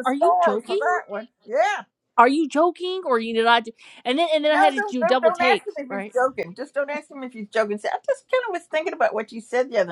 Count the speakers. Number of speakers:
2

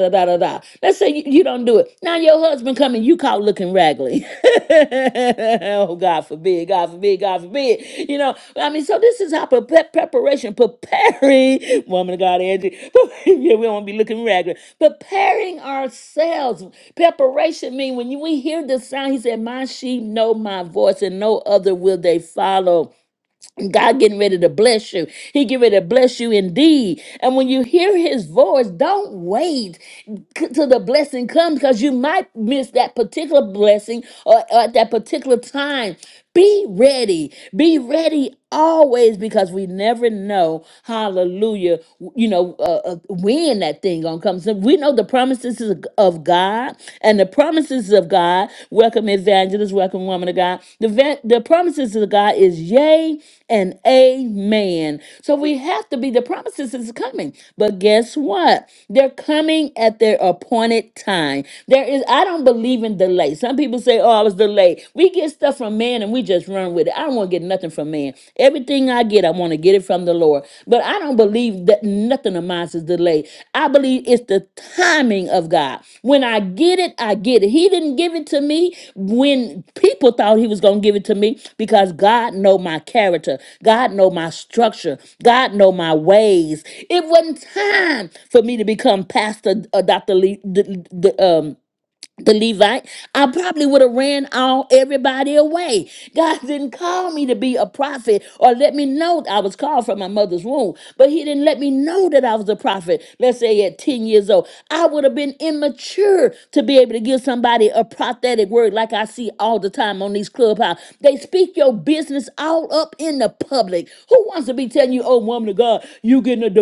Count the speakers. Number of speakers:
1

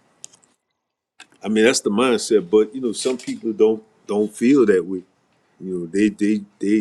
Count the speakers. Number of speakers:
1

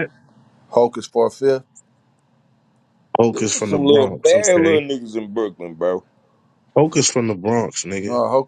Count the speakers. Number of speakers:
3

